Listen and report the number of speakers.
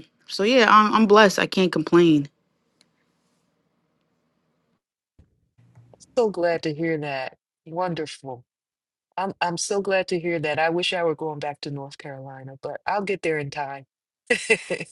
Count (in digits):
2